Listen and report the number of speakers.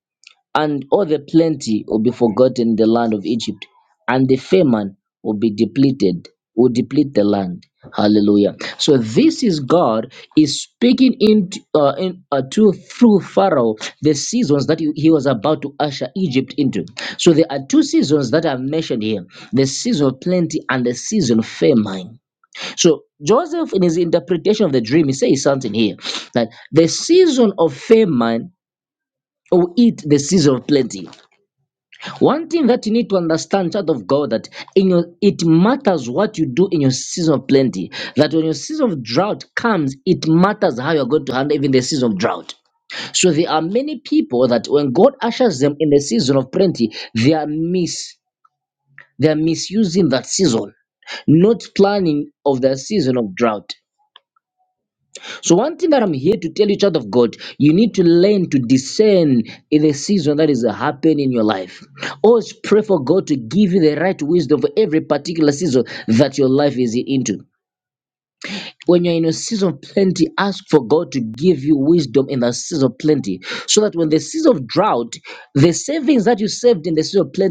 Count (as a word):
one